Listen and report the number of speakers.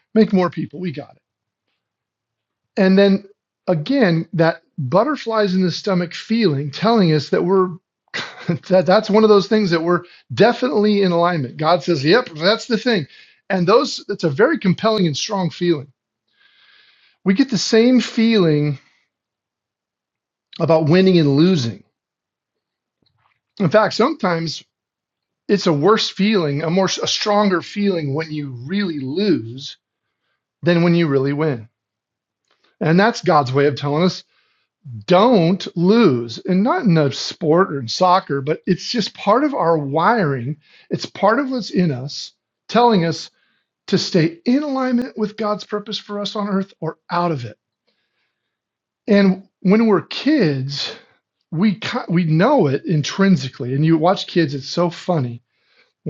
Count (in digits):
1